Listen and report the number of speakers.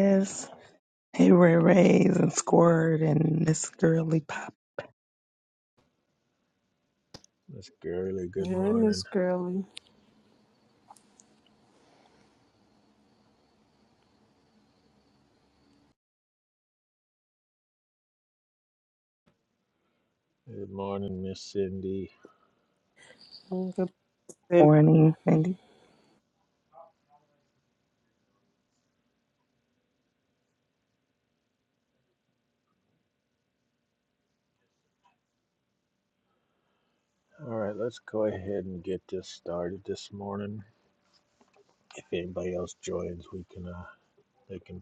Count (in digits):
3